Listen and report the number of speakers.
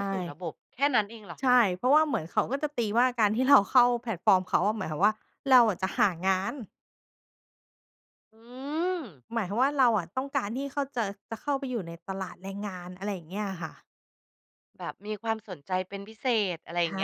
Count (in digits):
2